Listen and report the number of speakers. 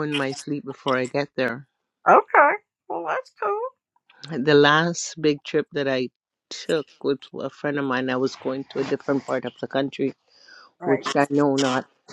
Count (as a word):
two